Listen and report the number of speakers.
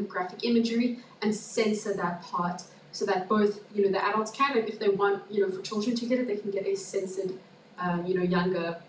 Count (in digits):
1